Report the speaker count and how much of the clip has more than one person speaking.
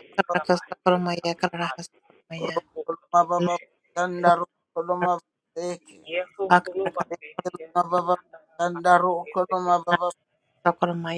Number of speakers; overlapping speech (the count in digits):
2, about 3%